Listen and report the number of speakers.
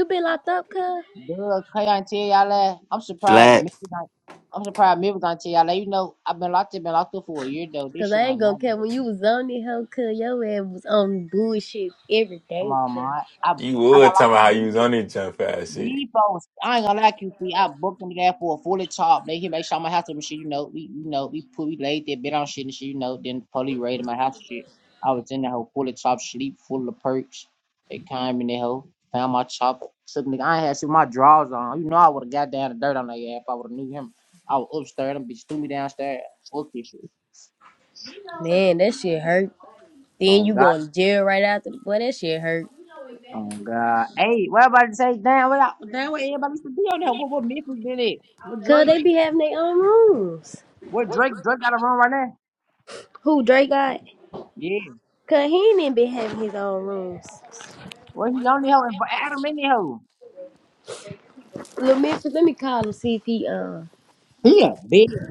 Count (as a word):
three